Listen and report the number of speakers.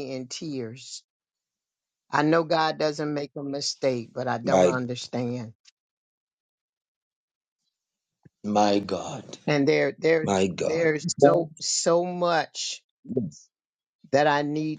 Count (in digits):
2